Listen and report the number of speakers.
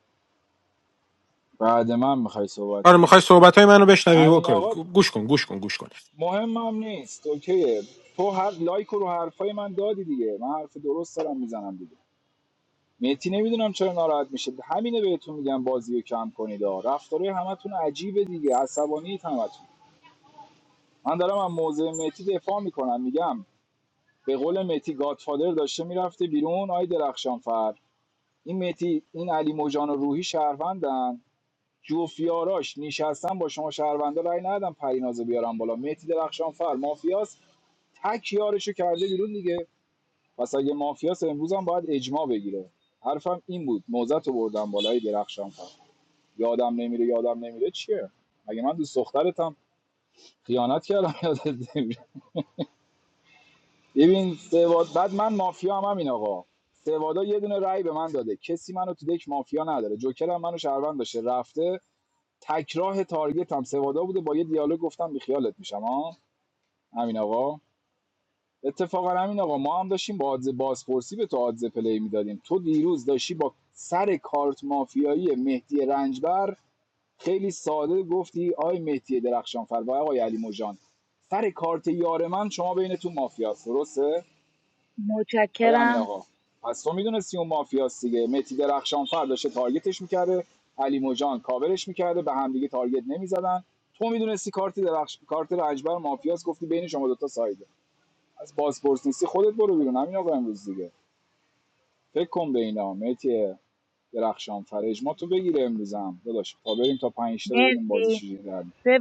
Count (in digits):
3